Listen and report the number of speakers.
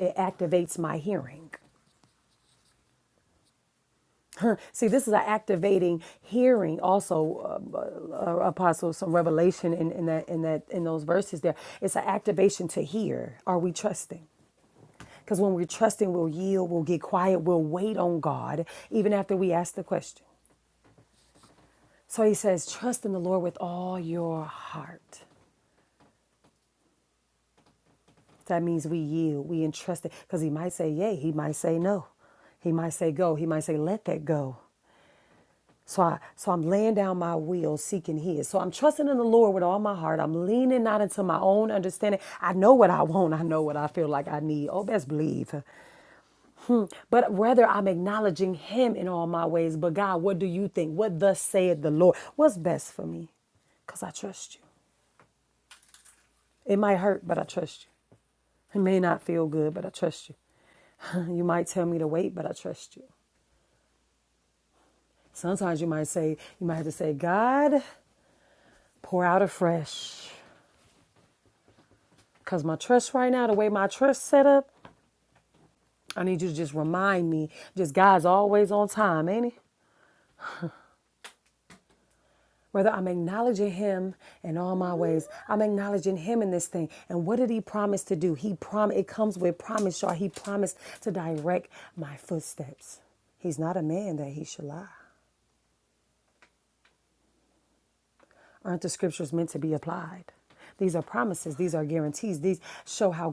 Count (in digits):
1